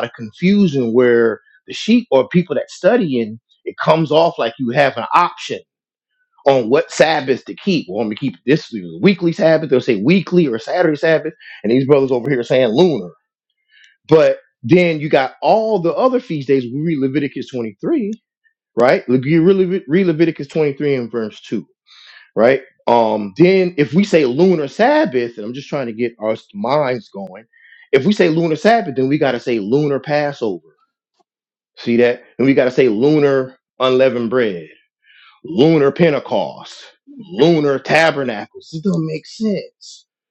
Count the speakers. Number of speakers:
1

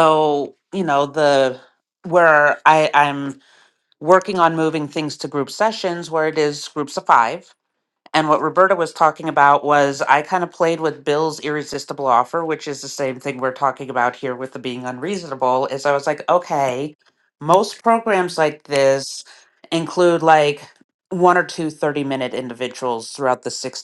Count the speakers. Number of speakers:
1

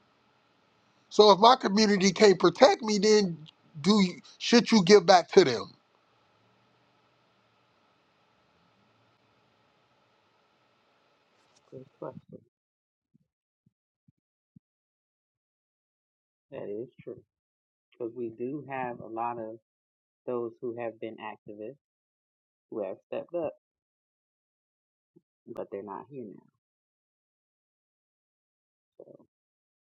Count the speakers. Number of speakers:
2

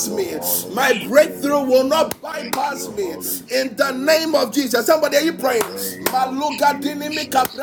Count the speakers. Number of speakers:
2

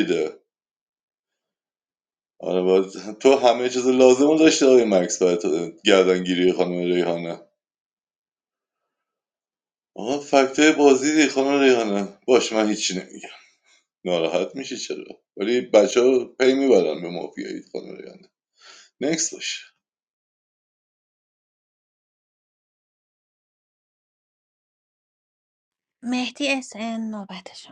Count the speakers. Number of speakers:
2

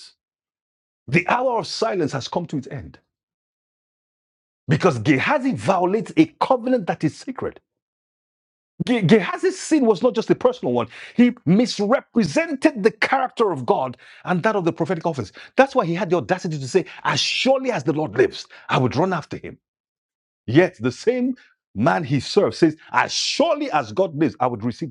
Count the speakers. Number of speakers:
1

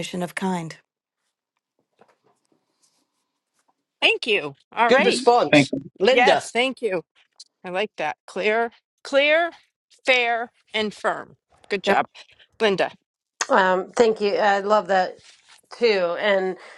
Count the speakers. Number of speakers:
4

